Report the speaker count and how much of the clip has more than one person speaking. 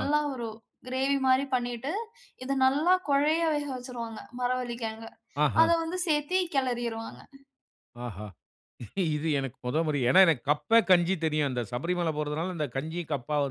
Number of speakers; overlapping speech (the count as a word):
two, about 2%